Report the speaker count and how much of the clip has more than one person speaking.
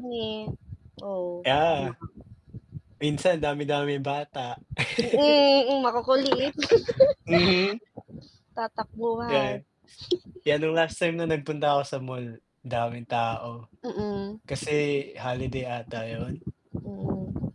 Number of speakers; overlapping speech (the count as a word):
two, about 4%